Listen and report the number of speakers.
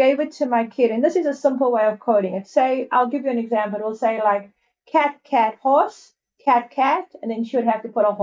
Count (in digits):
1